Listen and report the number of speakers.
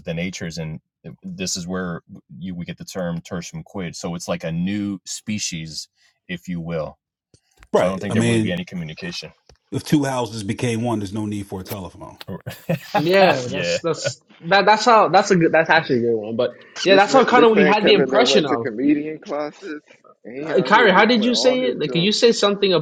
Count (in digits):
4